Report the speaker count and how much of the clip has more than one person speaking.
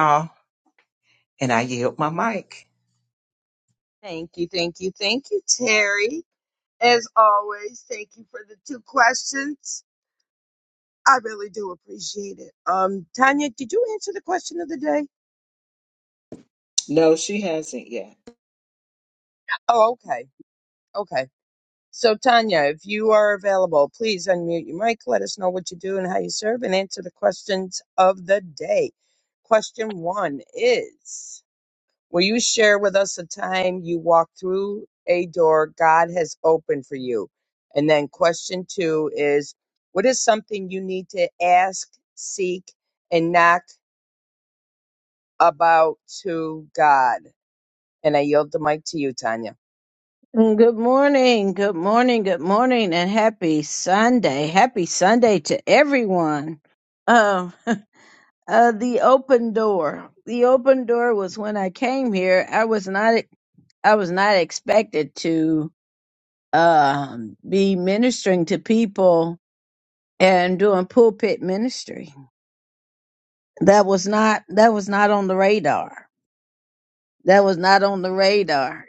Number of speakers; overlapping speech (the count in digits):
3, no overlap